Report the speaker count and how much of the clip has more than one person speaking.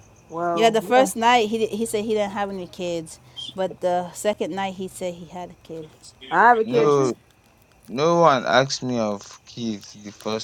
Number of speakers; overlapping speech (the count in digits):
3, about 10%